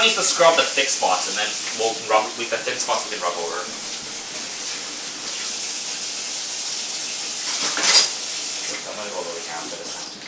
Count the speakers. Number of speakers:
1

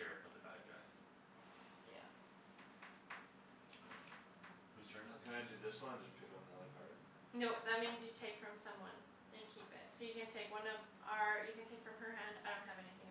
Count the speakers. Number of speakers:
3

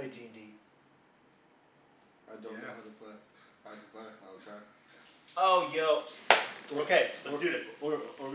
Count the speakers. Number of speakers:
3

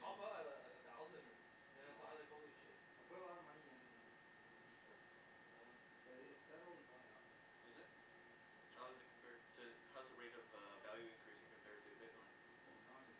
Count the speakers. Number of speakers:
3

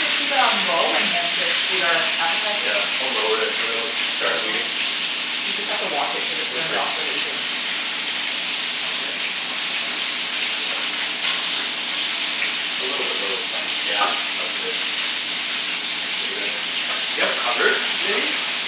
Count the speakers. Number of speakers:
2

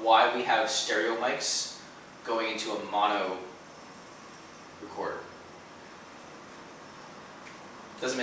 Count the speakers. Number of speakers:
1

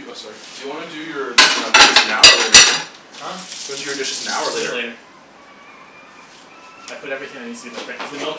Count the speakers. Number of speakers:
2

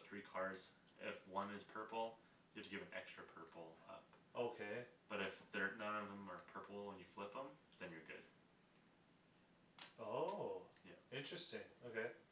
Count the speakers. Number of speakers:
2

